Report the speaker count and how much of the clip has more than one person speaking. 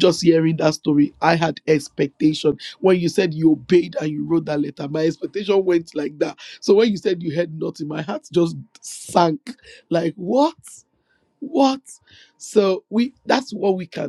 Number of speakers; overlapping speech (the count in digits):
1, no overlap